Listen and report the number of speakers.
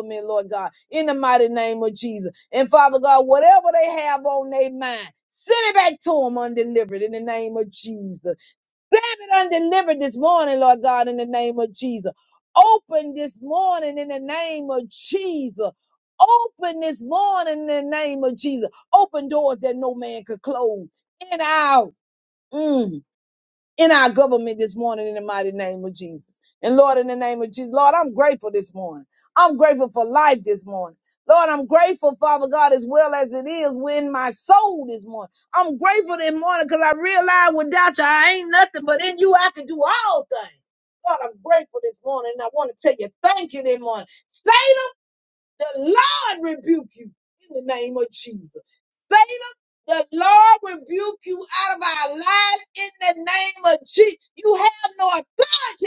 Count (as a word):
one